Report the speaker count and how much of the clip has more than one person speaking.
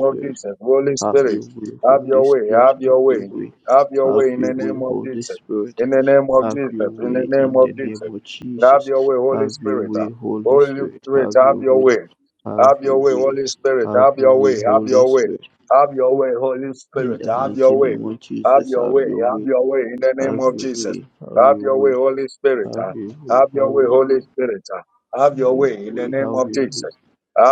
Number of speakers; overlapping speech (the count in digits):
2, about 60%